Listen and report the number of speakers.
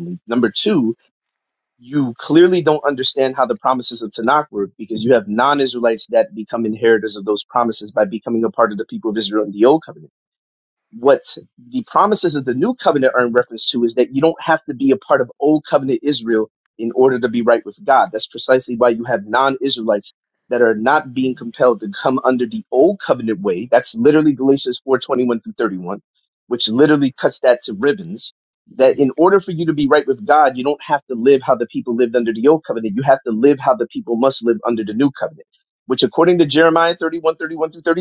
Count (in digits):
1